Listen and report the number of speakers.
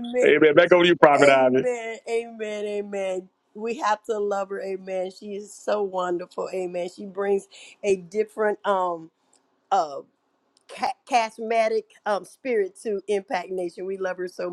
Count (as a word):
two